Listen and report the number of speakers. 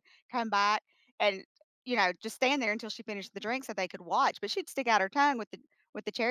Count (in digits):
1